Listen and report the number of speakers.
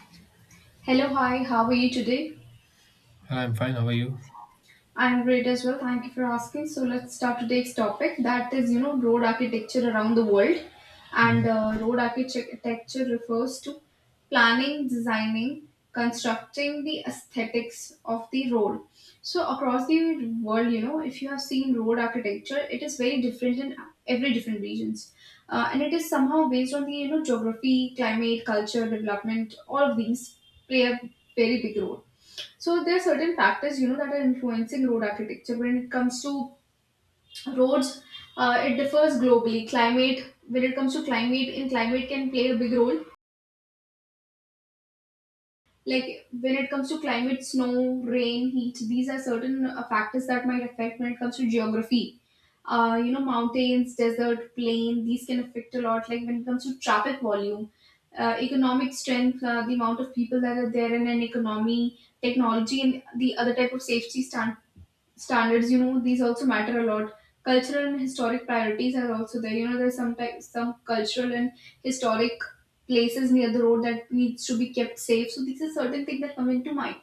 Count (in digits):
2